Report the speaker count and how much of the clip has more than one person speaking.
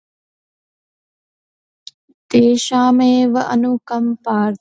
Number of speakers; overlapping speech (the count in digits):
1, no overlap